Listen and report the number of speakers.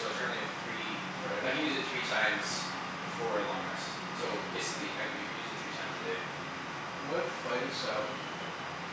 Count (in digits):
2